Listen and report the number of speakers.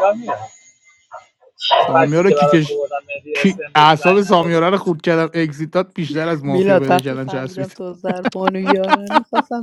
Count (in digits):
3